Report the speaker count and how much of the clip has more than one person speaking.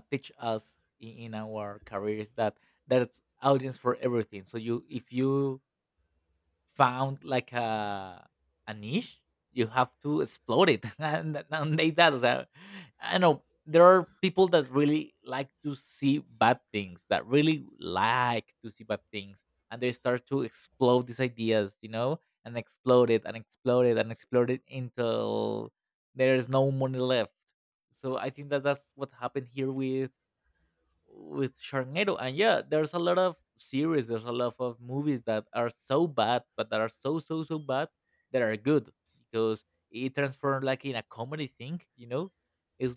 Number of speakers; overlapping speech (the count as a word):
one, no overlap